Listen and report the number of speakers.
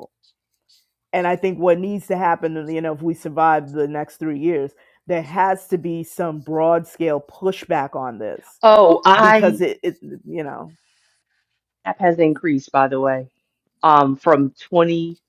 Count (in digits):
2